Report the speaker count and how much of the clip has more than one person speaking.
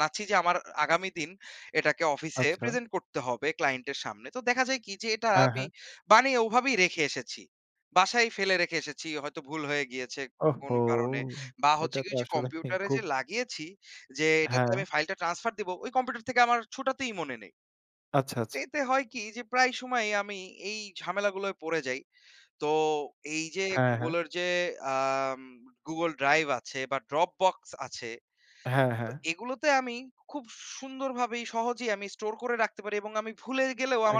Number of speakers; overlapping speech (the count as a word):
two, about 9%